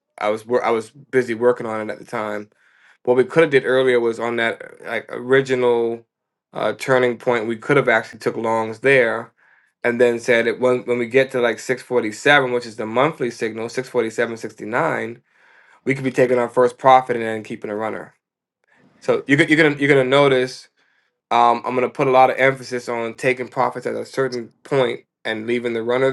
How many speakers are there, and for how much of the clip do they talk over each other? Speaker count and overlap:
1, no overlap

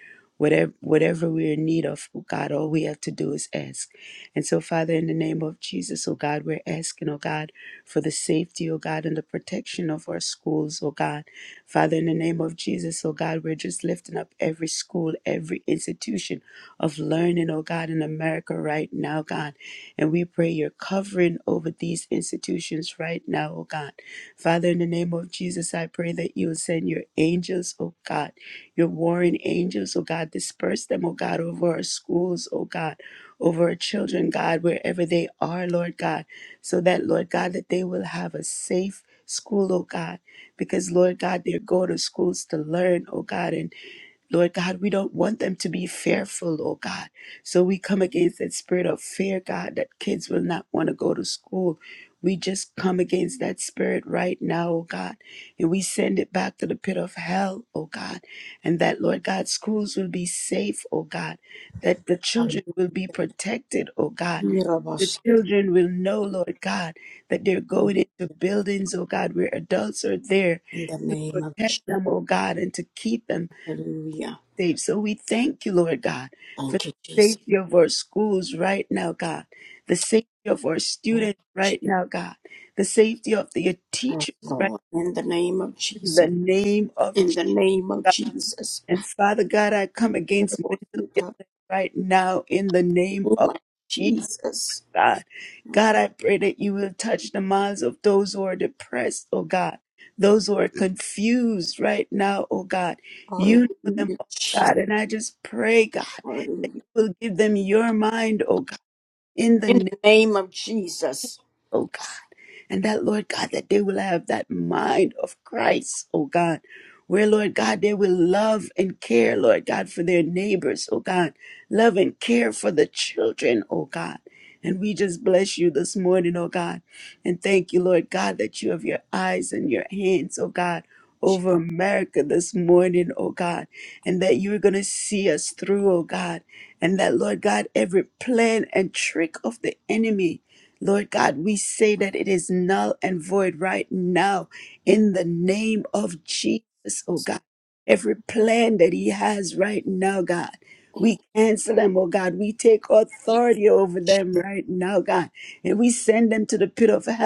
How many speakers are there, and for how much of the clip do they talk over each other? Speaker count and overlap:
2, about 3%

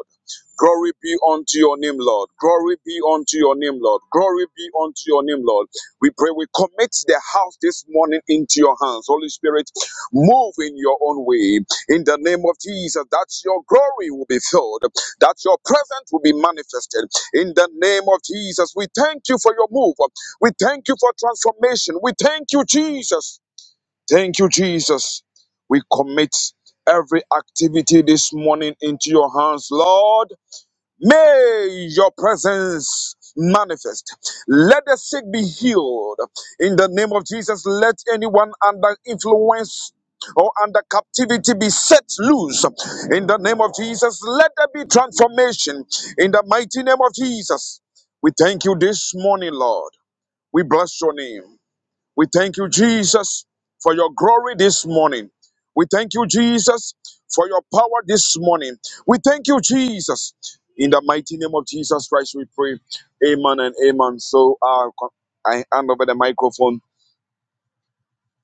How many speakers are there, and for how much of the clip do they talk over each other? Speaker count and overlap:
1, no overlap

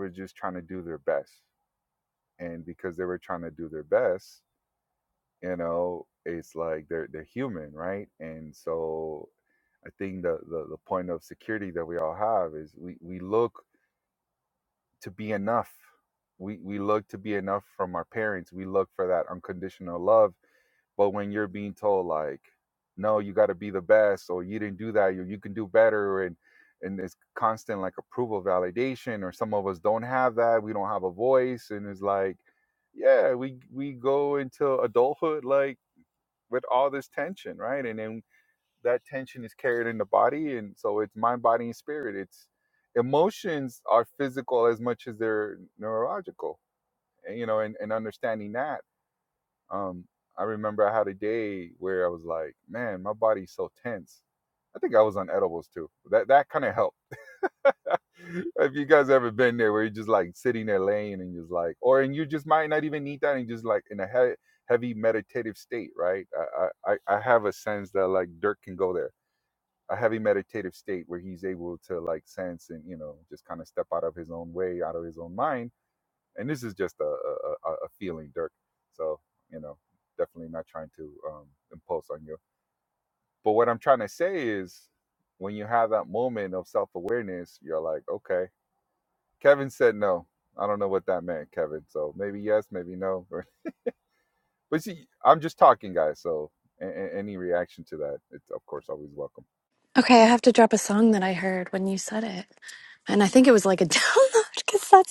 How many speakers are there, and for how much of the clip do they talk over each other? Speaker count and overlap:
2, no overlap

